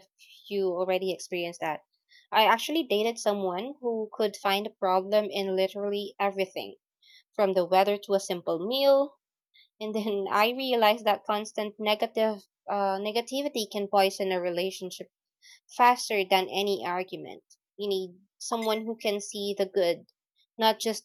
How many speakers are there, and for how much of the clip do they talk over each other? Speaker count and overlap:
1, no overlap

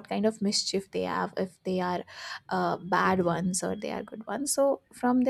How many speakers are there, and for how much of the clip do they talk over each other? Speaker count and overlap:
1, no overlap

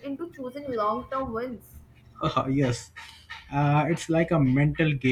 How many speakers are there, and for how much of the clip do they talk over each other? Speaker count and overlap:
2, no overlap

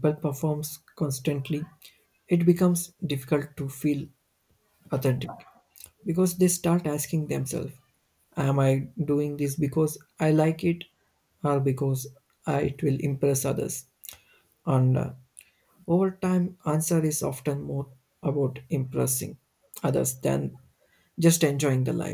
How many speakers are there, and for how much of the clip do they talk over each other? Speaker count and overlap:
1, no overlap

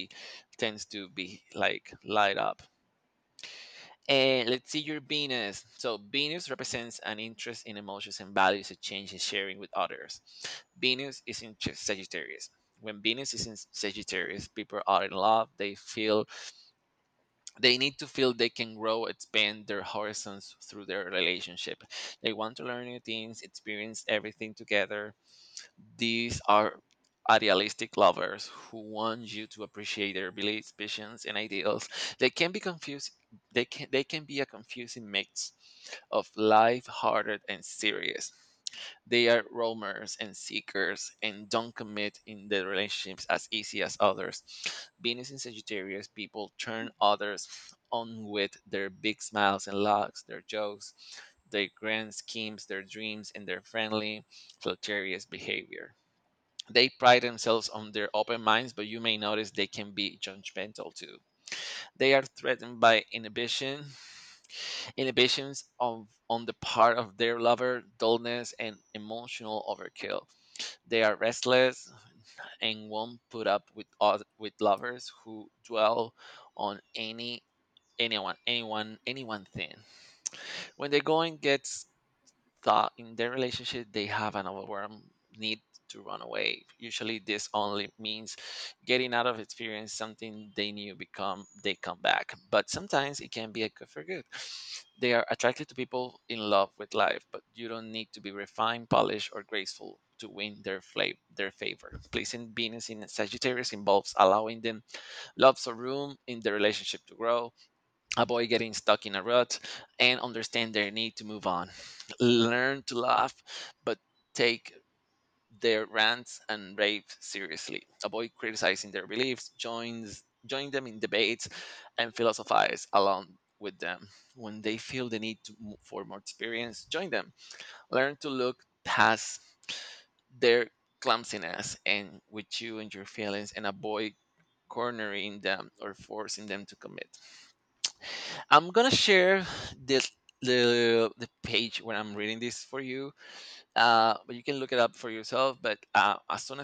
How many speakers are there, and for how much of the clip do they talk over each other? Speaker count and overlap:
1, no overlap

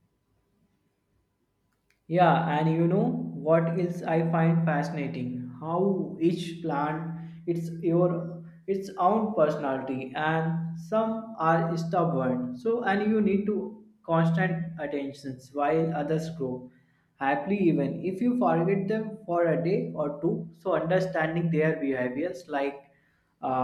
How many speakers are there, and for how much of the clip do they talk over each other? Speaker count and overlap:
1, no overlap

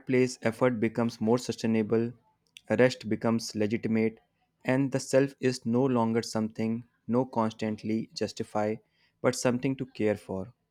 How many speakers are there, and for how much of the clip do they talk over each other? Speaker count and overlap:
1, no overlap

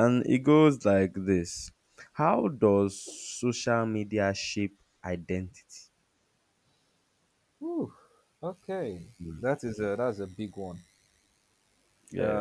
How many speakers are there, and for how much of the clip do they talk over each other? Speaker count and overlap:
2, about 2%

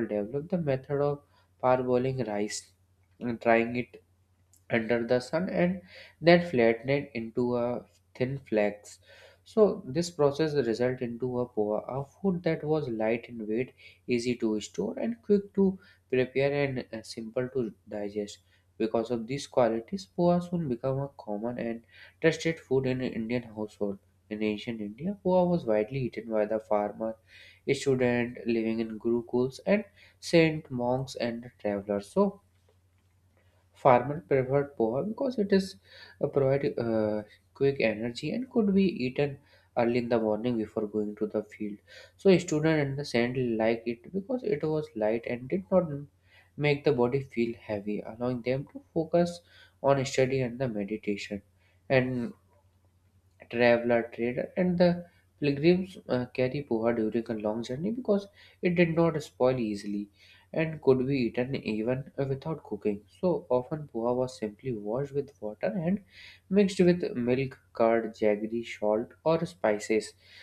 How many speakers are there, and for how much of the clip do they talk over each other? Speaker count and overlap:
1, no overlap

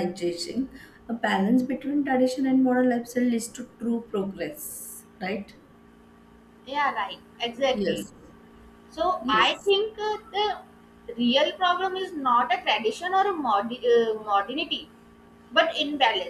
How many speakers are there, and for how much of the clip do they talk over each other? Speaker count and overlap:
2, about 3%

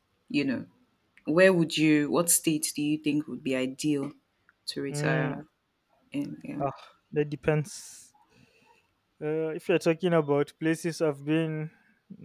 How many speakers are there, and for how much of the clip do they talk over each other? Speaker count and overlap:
2, about 4%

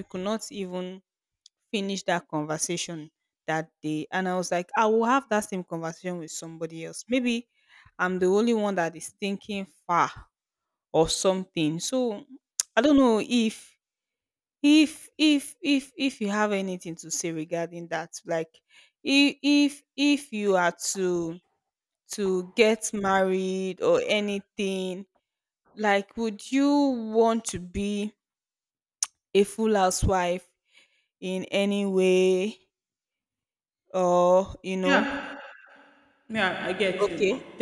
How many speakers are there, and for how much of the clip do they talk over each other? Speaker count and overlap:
2, about 2%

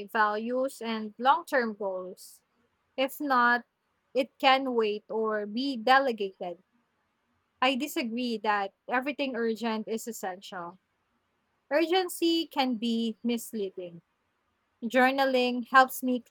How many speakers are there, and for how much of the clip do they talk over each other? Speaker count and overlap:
1, no overlap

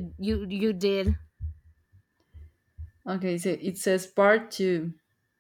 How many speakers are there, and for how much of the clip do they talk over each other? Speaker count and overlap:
2, no overlap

